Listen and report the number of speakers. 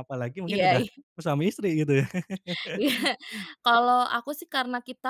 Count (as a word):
two